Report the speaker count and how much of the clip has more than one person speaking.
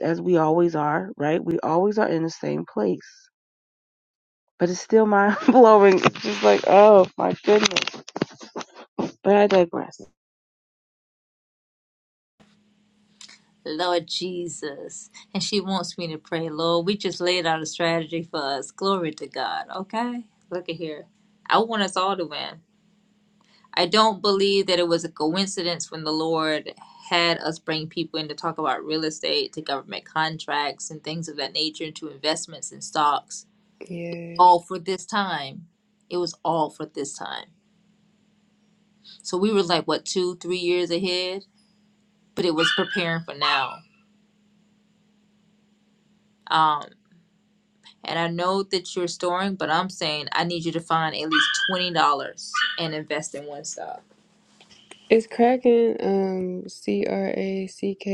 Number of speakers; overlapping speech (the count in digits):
3, under 1%